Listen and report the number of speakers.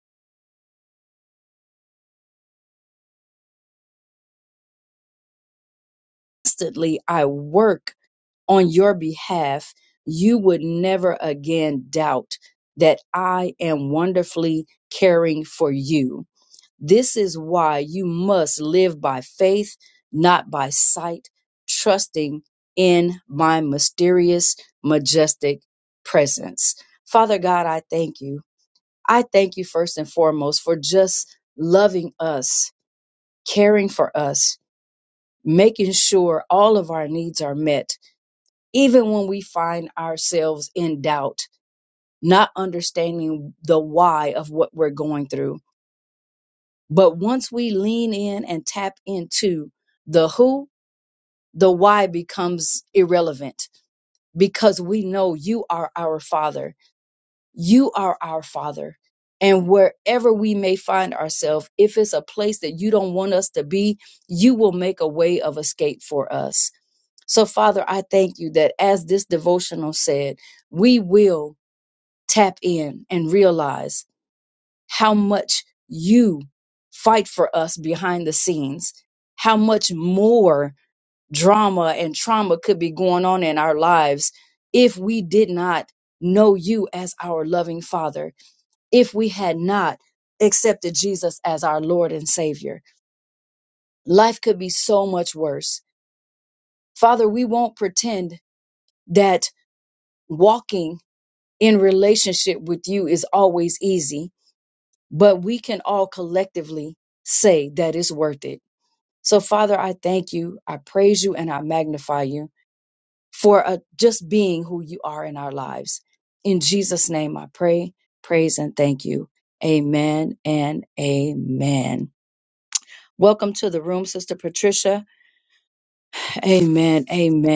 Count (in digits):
1